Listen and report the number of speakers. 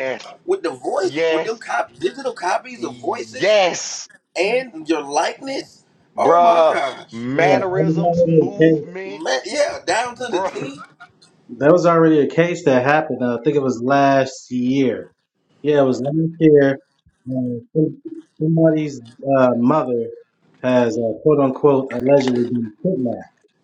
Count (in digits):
3